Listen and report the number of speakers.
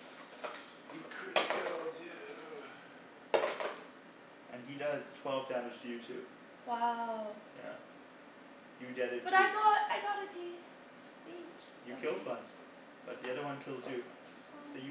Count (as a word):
three